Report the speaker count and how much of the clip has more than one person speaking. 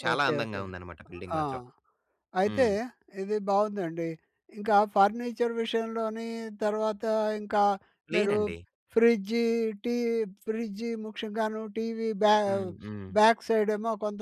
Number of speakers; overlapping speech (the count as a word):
two, about 9%